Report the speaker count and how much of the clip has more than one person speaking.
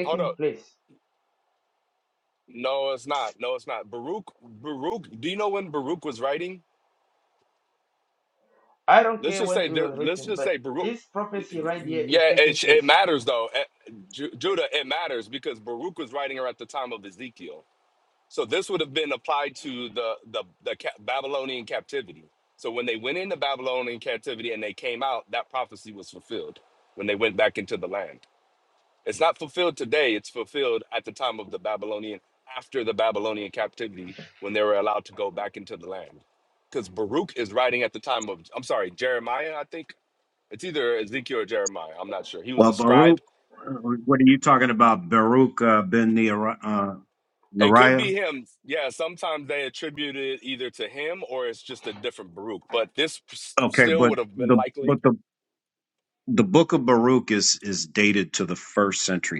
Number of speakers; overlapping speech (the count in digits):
3, about 10%